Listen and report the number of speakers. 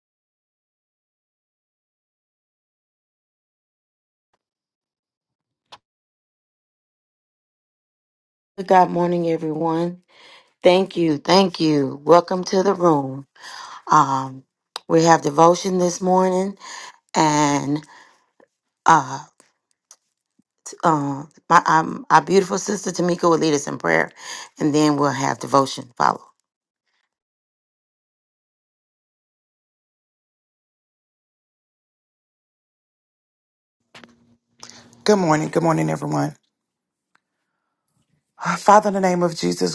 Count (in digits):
2